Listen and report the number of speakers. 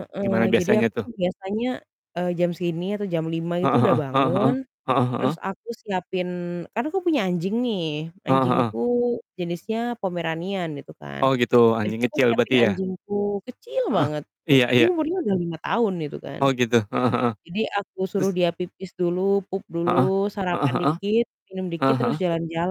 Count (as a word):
two